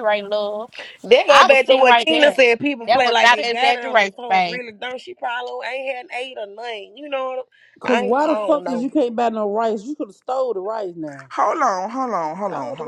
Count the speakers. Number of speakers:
4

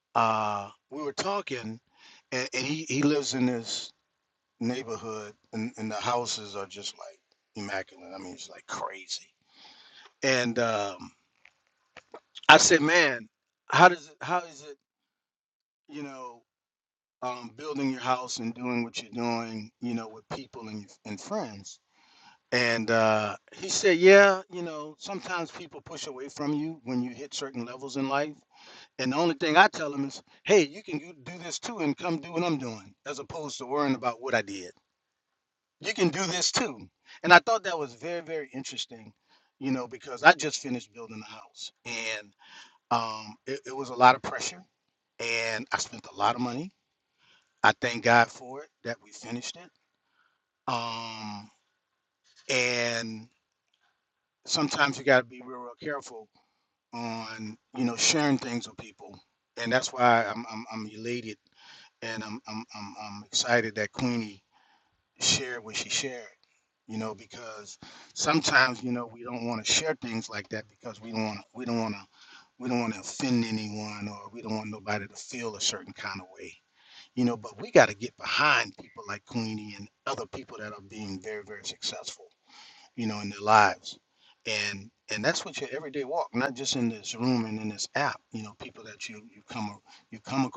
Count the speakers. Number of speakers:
1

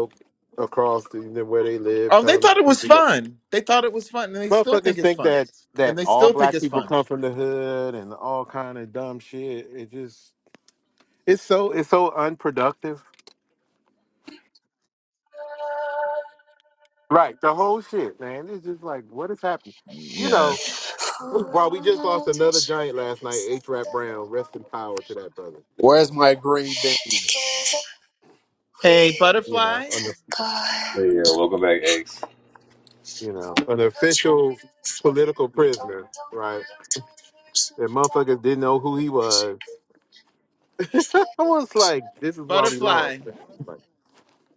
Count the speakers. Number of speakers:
5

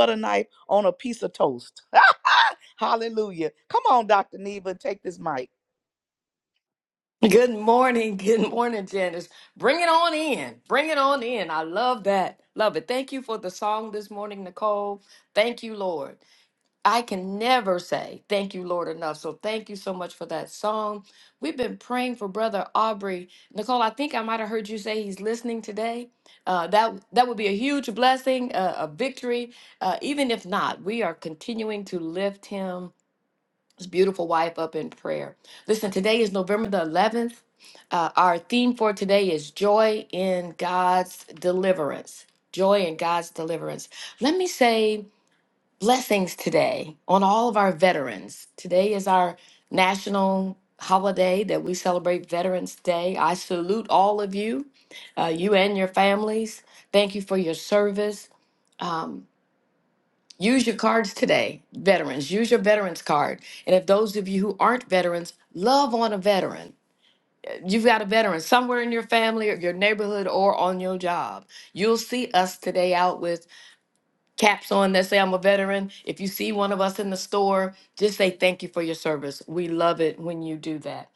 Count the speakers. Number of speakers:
2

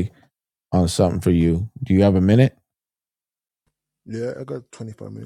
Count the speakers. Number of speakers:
2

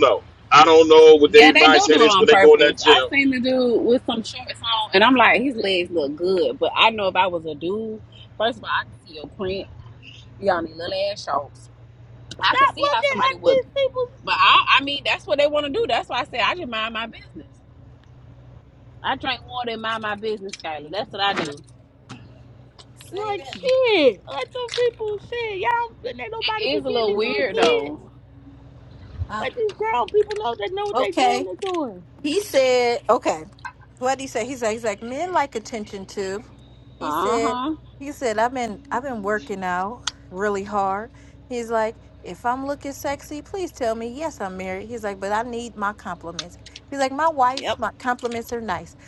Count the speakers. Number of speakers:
4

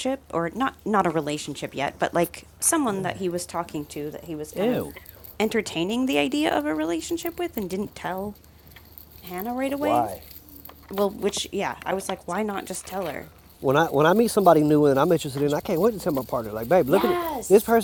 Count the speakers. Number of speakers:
2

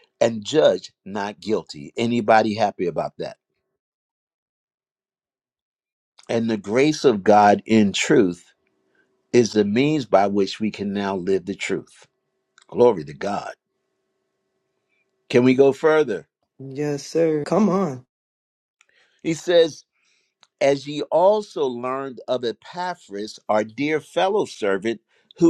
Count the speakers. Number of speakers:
2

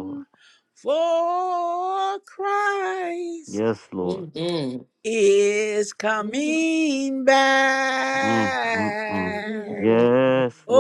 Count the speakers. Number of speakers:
3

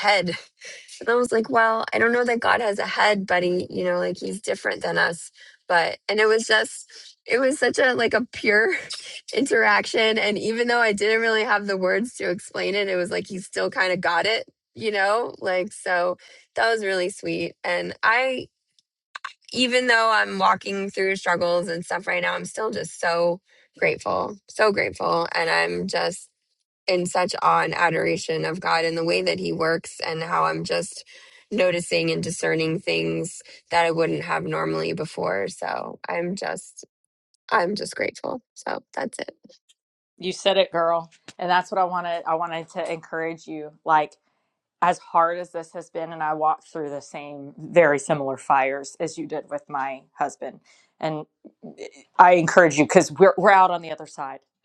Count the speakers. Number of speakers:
2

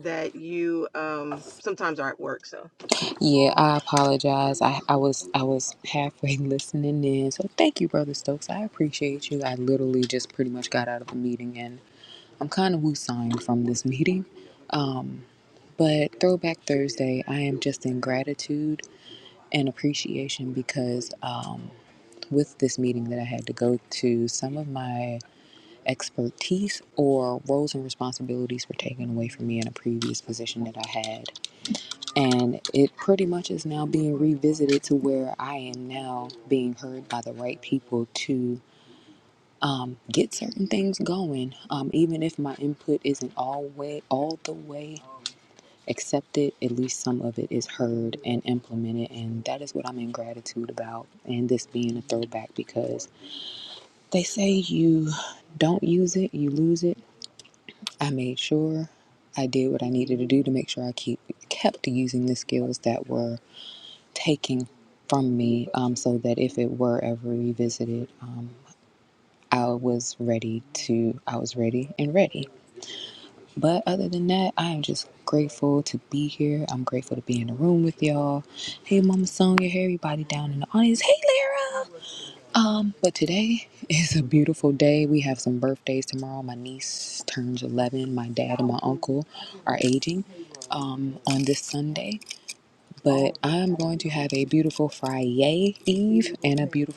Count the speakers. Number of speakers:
2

